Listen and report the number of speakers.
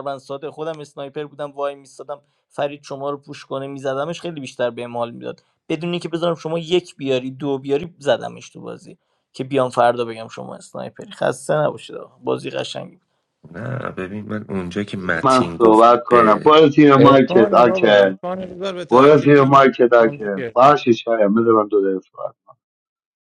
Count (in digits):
4